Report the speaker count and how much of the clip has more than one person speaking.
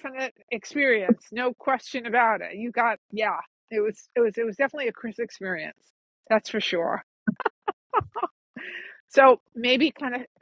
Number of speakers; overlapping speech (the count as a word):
one, no overlap